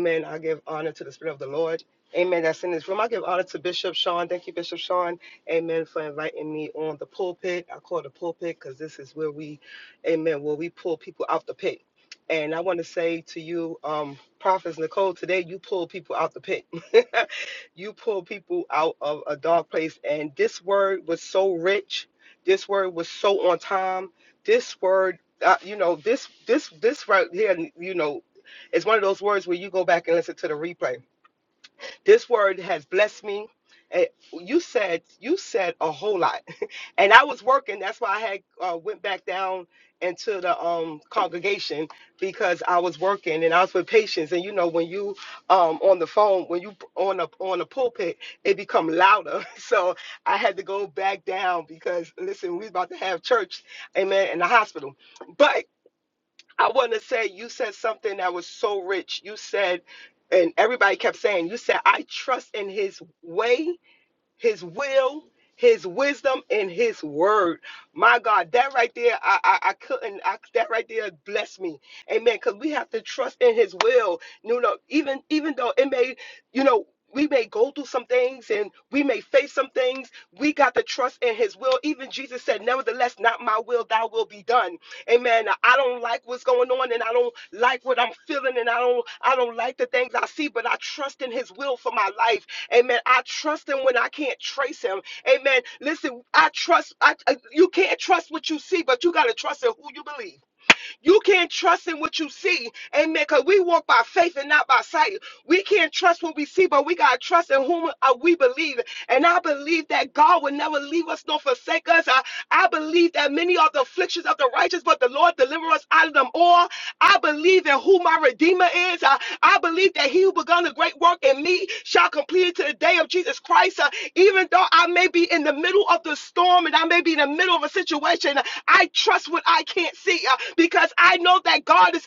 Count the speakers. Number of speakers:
1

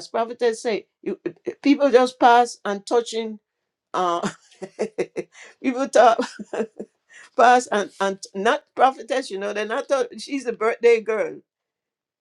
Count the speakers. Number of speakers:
1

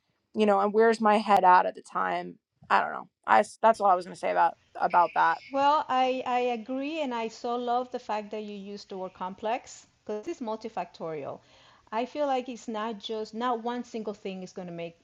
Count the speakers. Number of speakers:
2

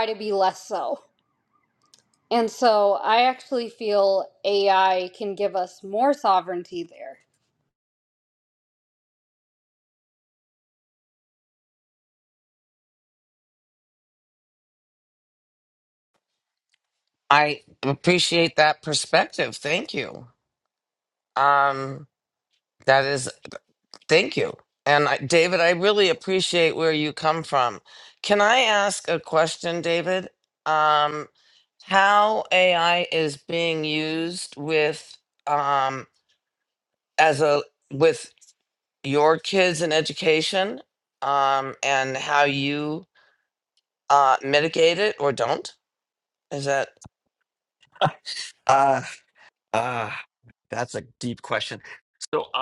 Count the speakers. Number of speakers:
3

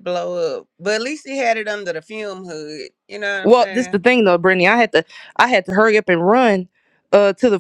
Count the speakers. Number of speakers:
2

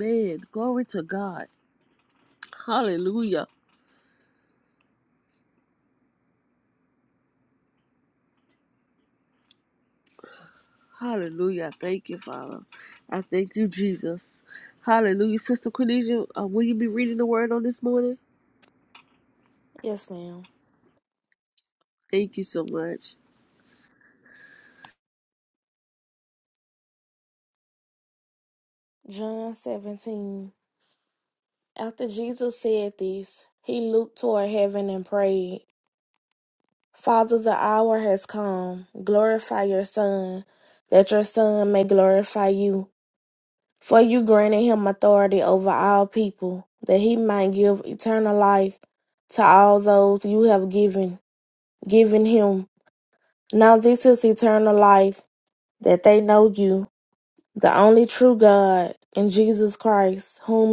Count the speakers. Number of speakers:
2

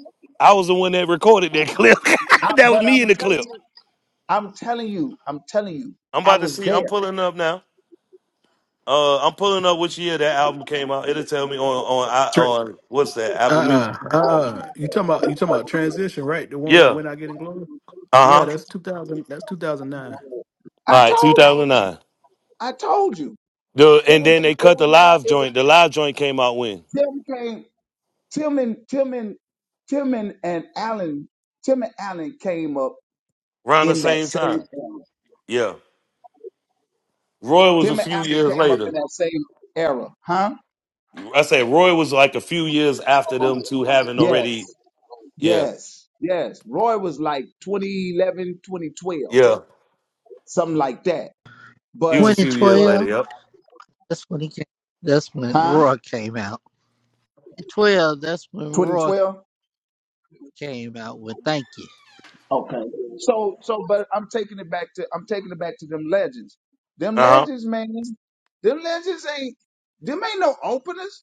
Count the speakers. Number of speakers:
4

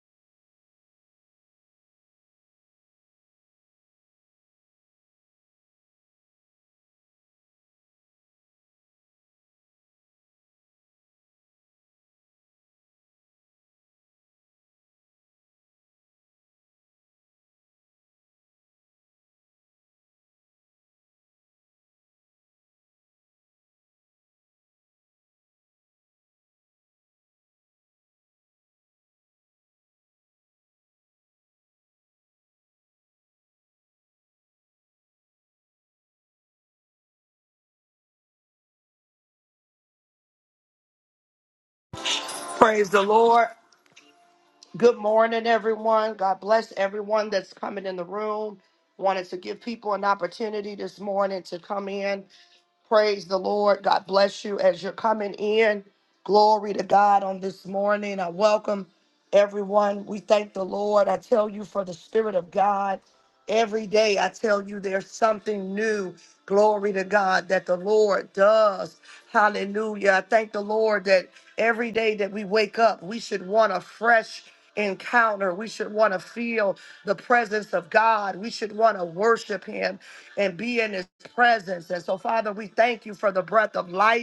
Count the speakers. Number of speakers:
1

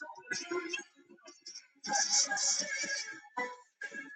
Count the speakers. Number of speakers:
0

